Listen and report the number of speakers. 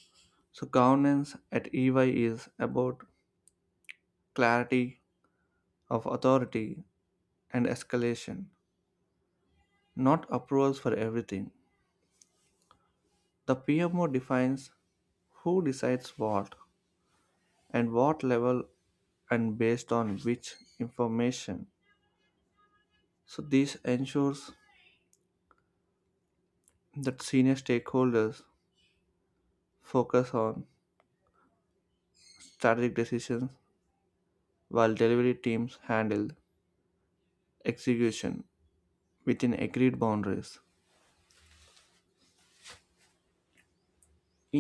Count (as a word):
one